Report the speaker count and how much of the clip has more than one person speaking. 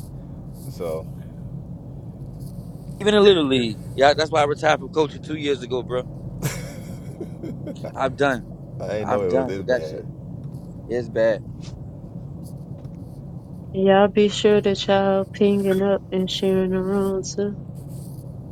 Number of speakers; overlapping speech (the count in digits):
3, about 6%